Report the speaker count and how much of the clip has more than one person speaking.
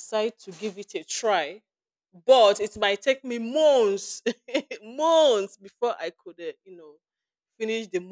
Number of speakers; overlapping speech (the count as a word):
one, no overlap